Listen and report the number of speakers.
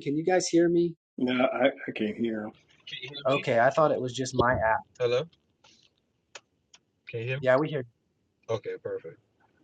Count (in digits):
3